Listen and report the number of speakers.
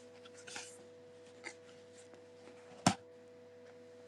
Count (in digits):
0